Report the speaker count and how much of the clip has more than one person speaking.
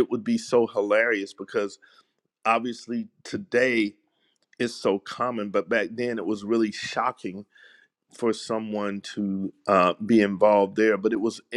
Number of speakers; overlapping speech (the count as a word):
one, no overlap